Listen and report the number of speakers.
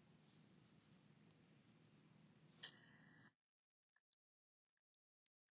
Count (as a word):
zero